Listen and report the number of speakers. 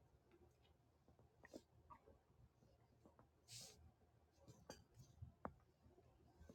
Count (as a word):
zero